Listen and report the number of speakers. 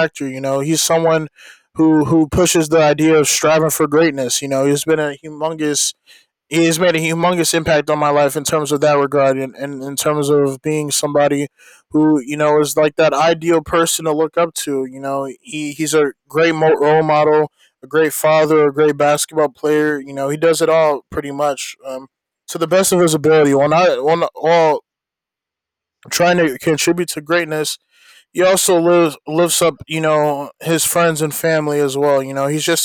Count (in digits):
1